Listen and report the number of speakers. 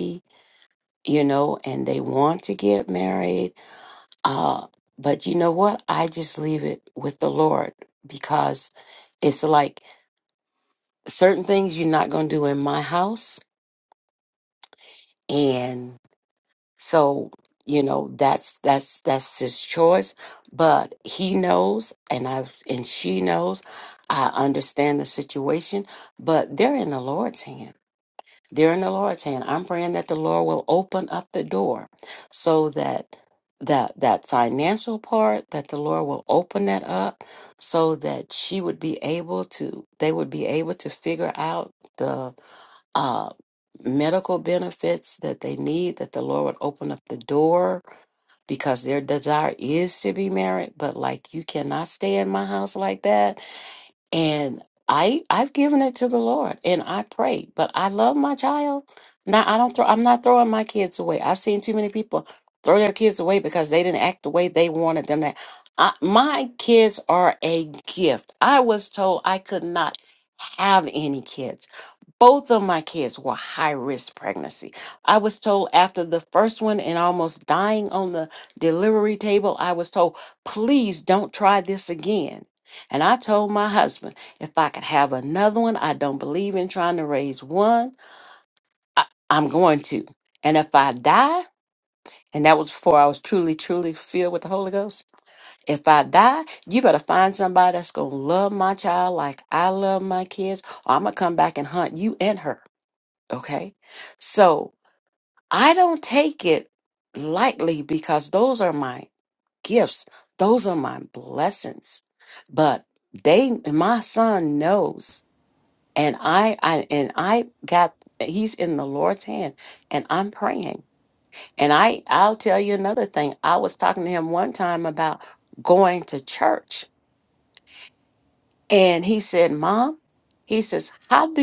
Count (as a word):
one